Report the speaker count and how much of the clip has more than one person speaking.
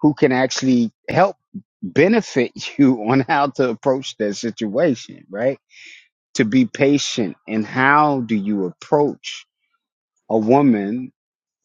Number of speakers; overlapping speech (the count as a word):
one, no overlap